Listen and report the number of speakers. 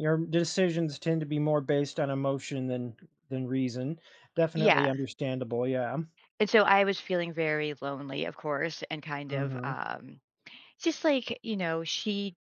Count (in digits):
2